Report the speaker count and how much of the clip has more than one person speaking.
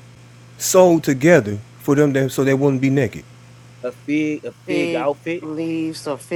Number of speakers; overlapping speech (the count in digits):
3, about 6%